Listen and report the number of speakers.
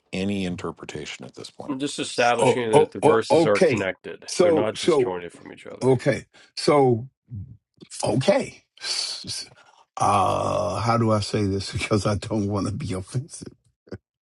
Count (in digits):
3